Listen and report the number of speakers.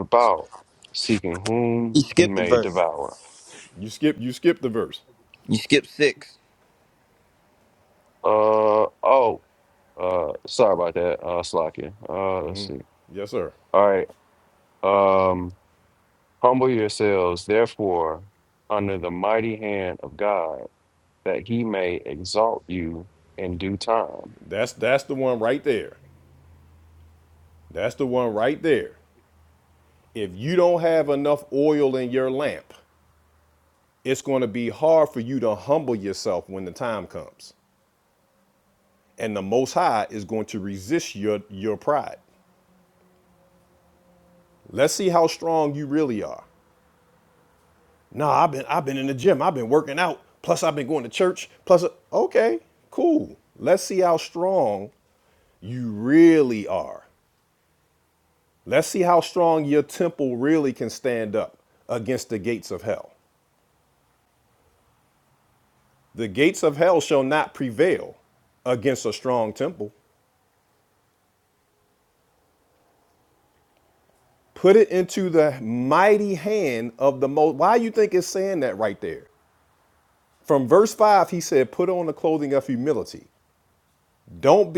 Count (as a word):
three